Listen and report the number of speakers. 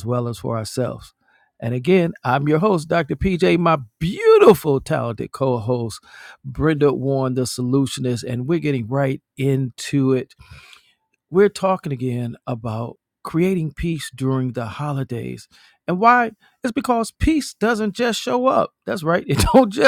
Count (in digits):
1